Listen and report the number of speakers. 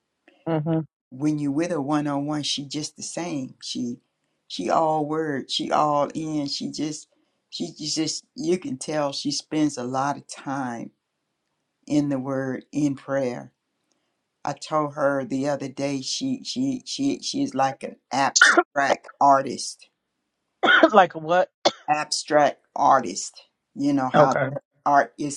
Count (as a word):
two